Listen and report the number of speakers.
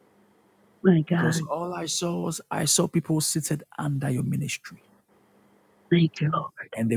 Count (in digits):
2